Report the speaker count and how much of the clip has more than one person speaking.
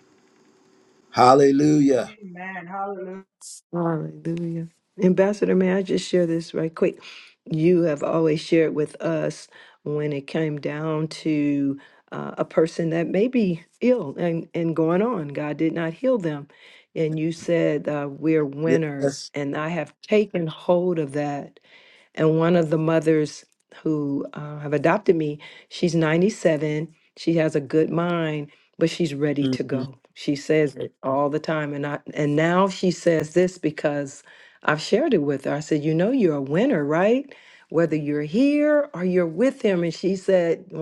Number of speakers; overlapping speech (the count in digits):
3, about 3%